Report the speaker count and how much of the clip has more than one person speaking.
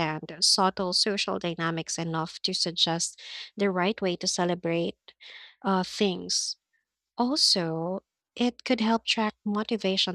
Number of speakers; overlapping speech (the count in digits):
1, no overlap